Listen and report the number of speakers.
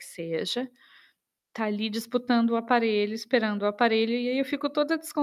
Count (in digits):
1